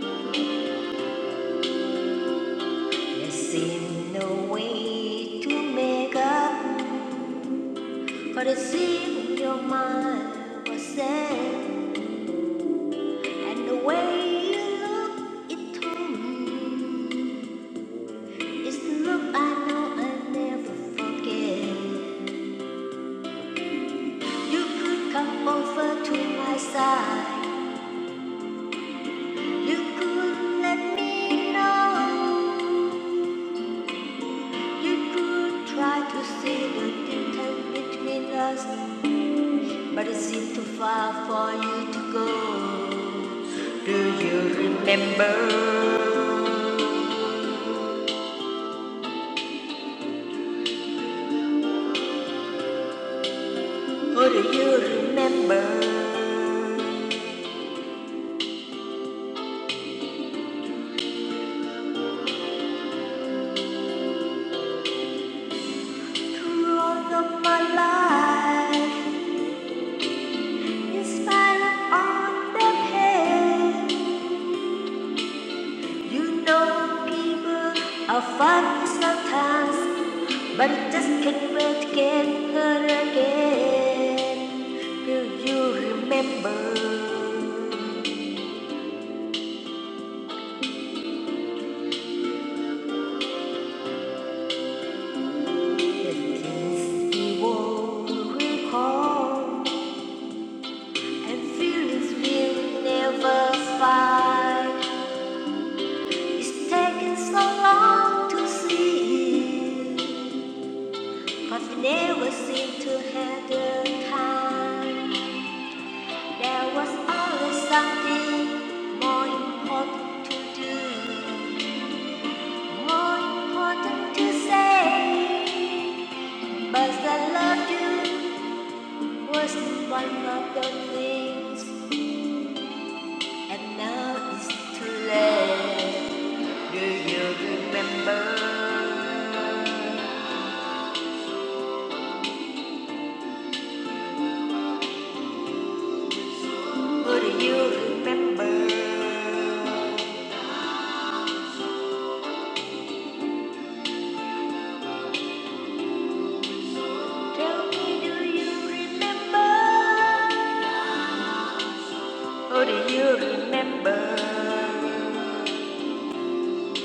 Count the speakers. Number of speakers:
1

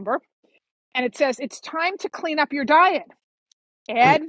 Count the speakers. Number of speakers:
1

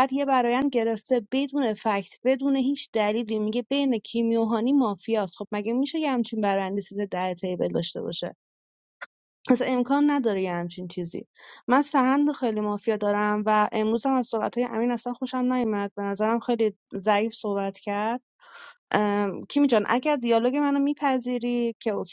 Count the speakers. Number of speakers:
1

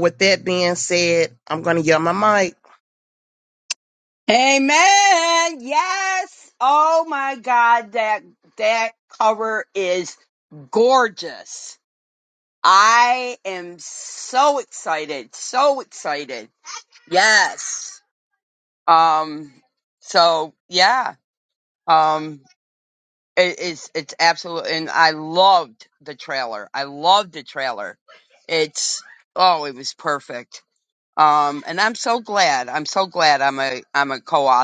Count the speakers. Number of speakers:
2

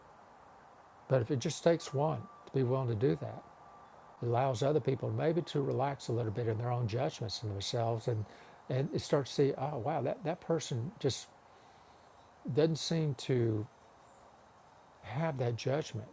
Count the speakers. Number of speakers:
1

